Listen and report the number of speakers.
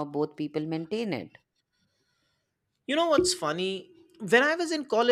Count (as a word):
two